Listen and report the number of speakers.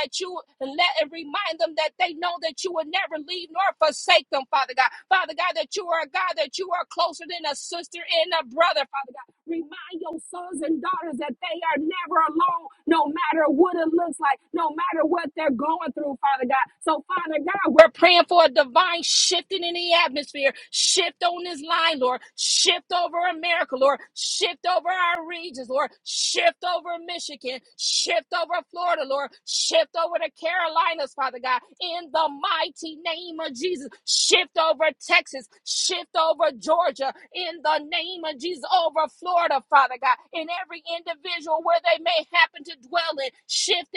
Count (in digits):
1